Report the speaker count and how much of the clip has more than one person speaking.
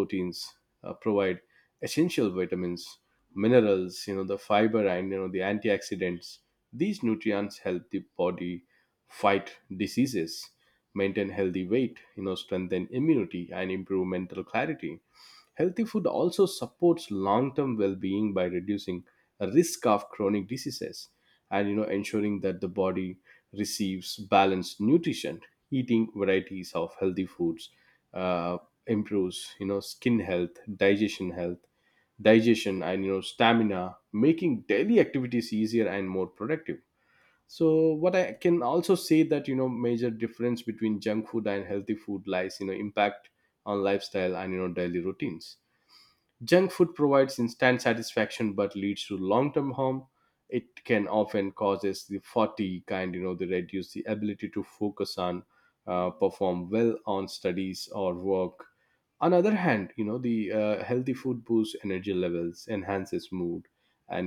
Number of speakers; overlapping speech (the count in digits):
1, no overlap